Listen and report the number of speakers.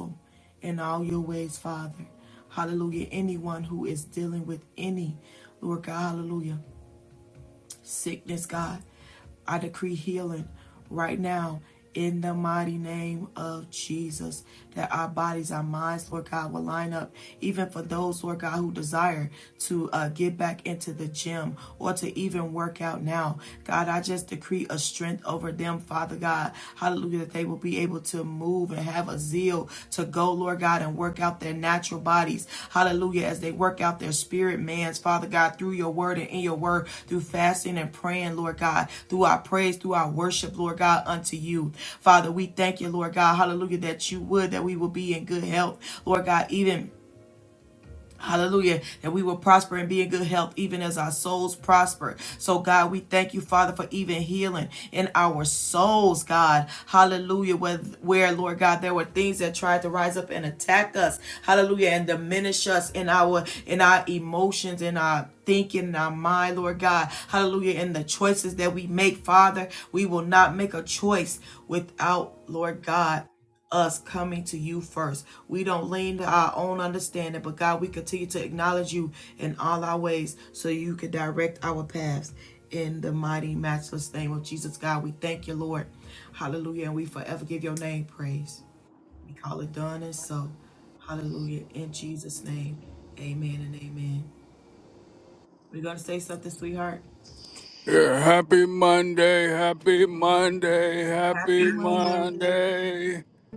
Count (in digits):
2